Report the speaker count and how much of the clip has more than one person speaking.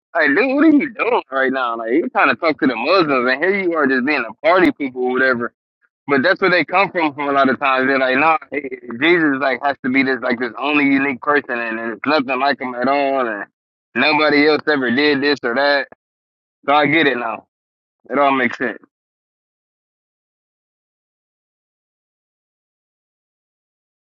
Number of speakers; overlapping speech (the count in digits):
1, no overlap